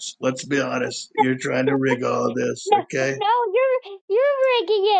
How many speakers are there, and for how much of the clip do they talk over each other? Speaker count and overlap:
2, about 11%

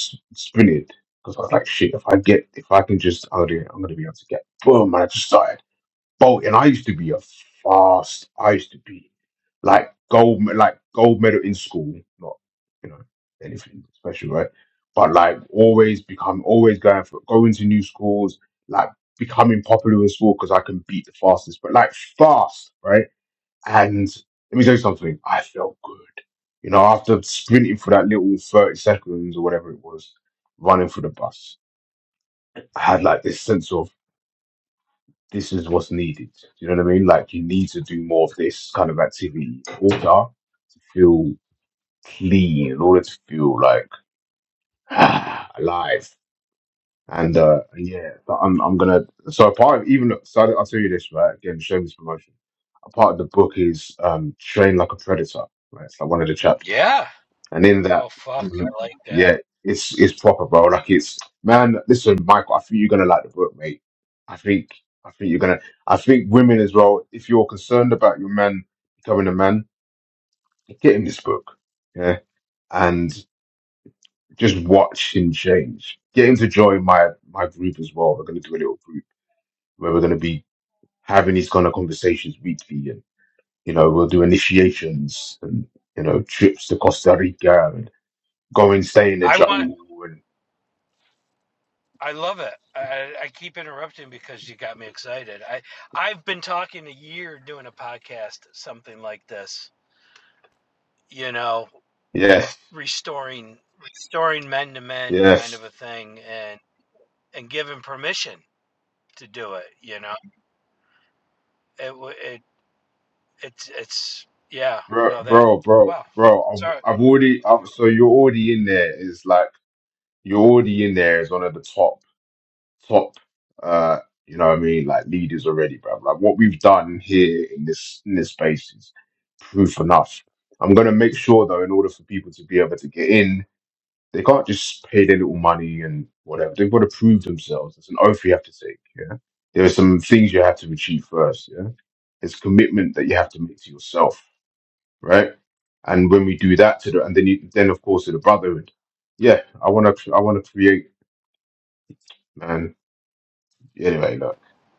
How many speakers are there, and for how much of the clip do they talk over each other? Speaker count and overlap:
2, about 2%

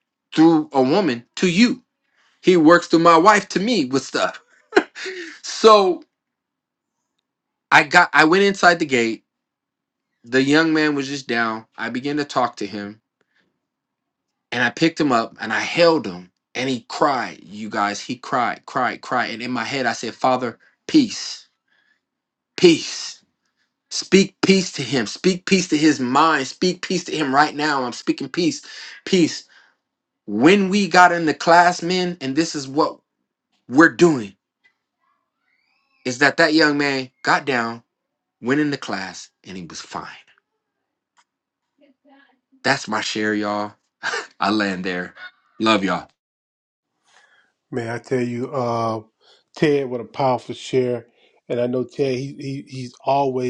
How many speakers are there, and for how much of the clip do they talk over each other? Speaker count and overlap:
2, no overlap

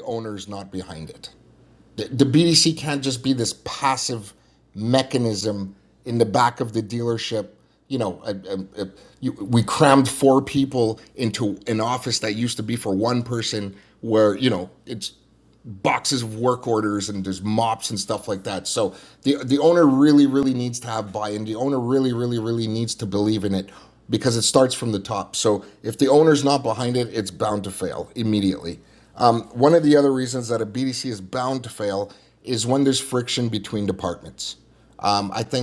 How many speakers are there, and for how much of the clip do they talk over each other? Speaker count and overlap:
1, no overlap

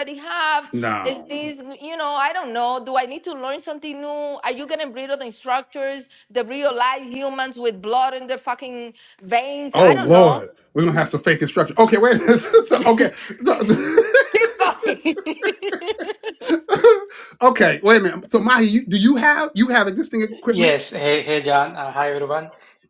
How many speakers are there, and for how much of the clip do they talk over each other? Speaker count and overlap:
3, about 6%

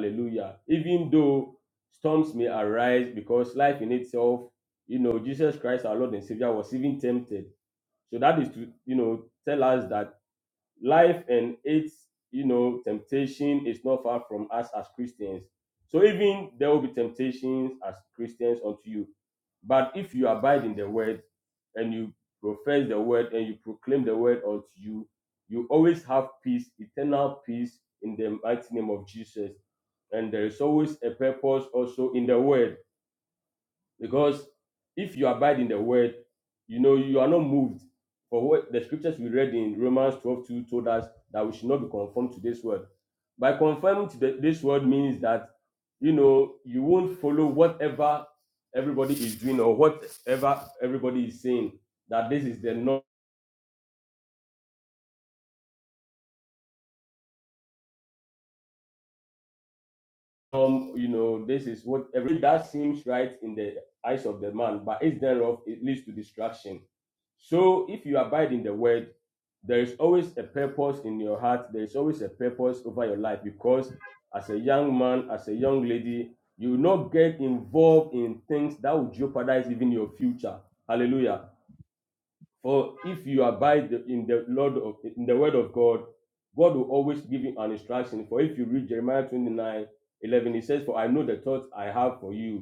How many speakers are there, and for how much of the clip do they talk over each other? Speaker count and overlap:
1, no overlap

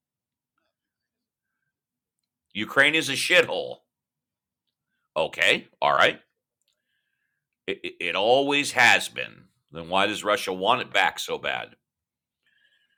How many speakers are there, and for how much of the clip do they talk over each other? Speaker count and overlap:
1, no overlap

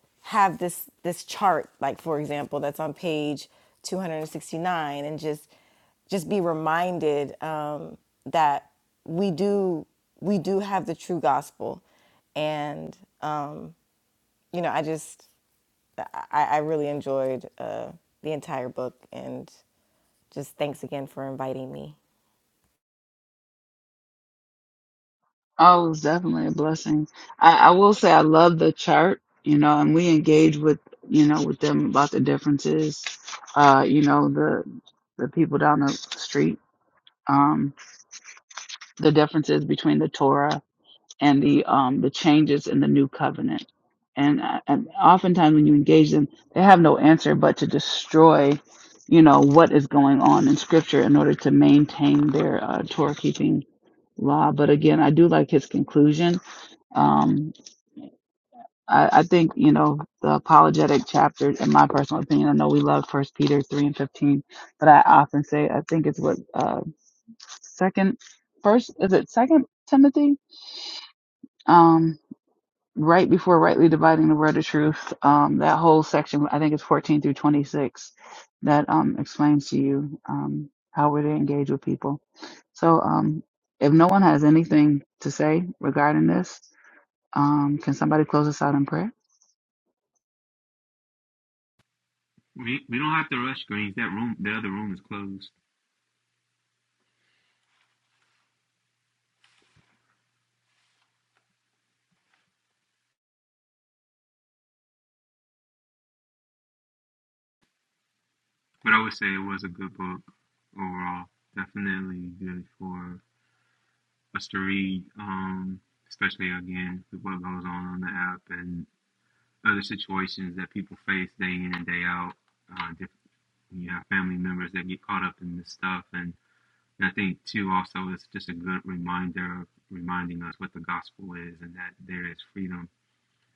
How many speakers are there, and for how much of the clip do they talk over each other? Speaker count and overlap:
3, no overlap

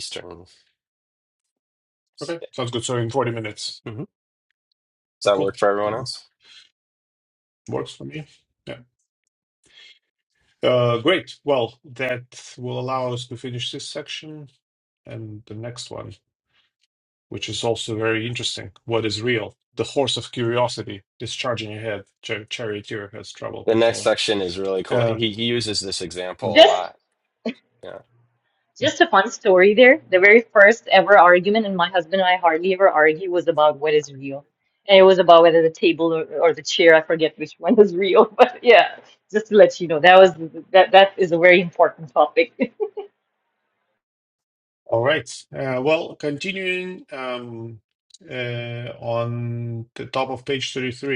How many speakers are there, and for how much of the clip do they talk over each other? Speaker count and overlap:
3, about 3%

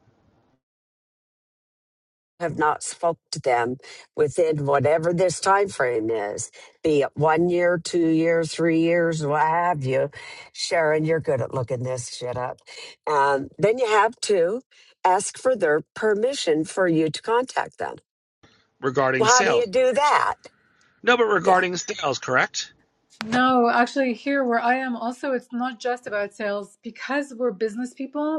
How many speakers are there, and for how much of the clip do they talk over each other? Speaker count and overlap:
3, about 2%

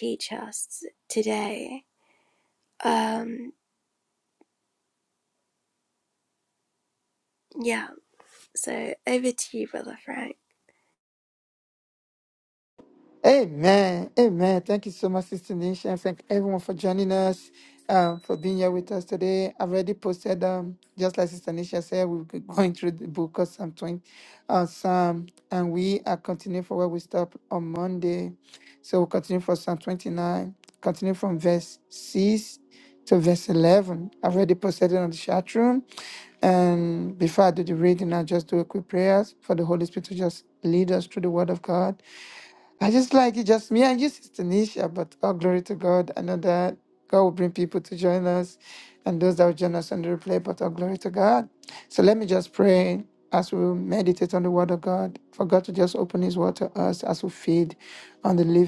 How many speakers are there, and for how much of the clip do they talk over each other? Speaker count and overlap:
2, no overlap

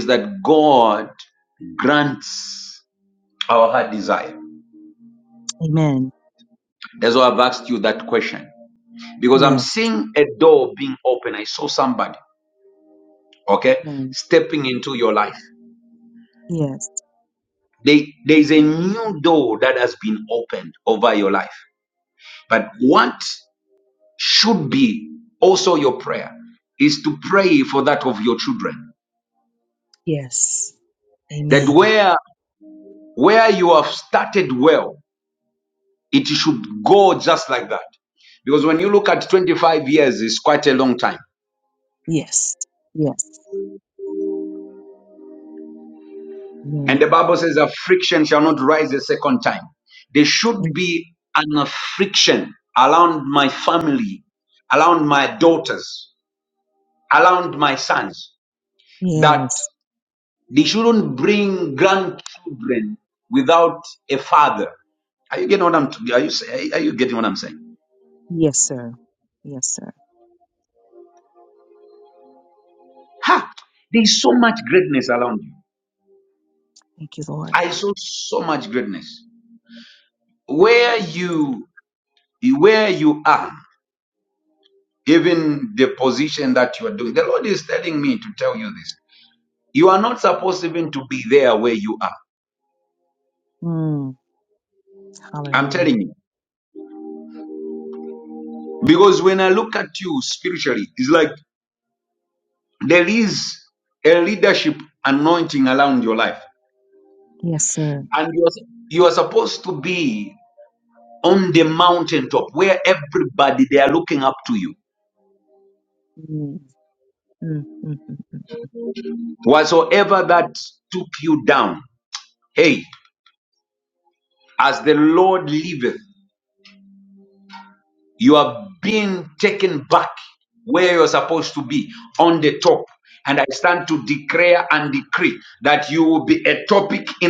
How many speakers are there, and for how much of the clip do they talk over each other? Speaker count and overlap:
2, about 1%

